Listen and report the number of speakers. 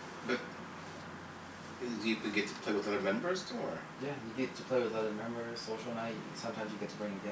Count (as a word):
two